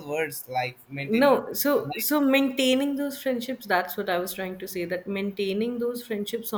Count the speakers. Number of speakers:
2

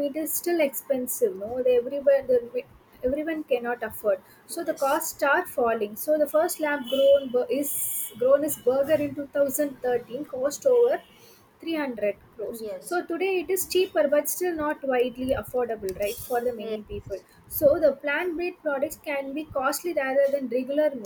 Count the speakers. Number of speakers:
1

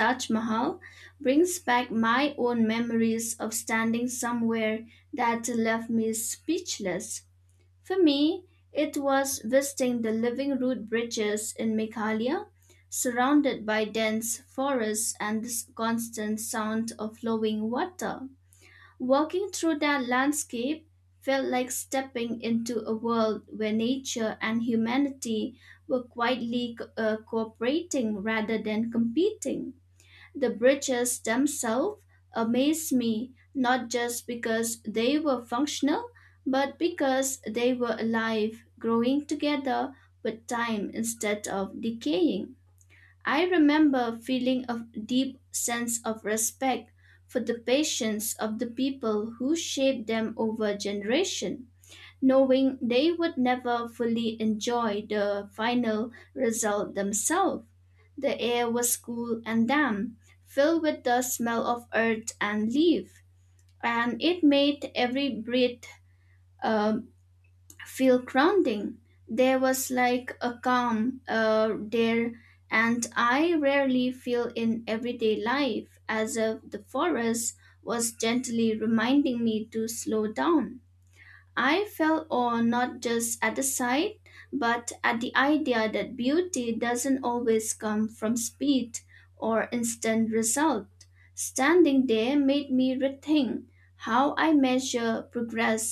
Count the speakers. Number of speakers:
1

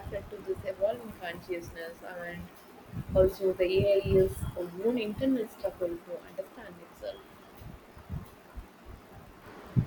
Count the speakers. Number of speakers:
1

